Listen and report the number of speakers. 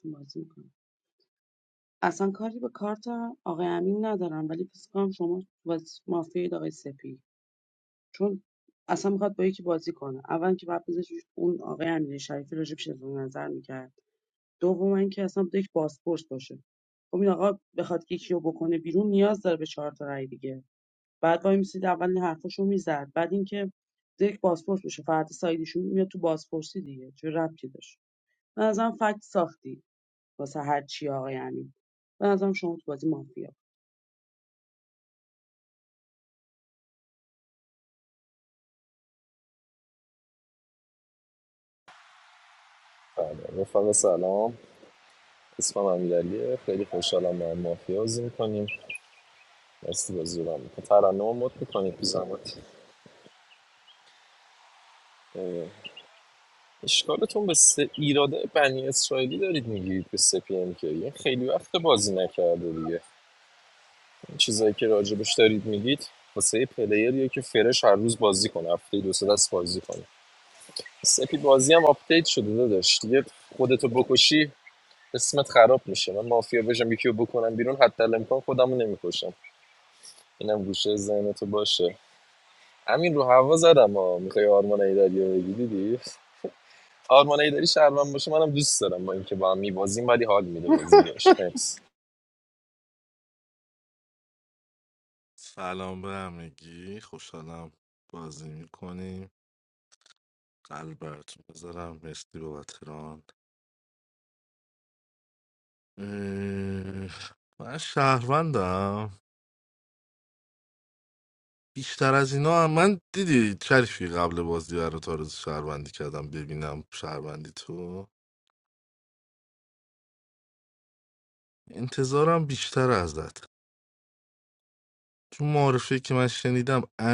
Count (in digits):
3